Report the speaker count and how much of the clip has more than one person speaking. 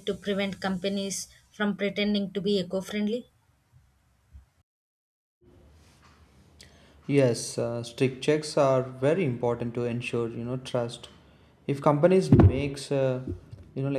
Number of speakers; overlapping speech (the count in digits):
2, no overlap